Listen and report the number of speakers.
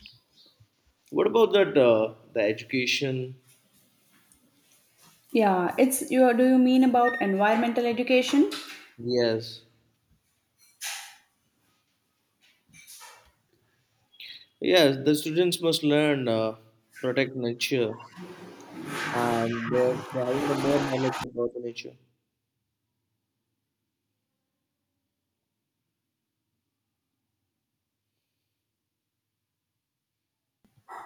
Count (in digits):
2